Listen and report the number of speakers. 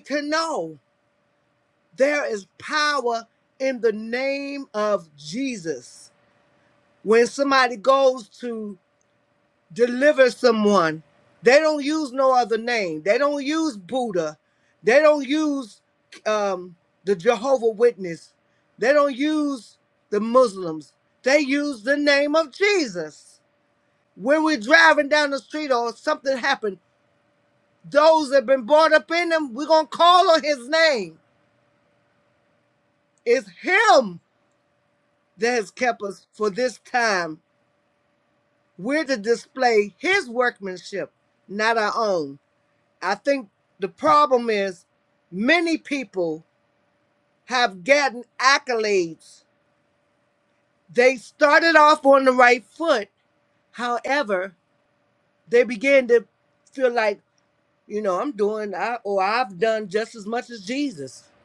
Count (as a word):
one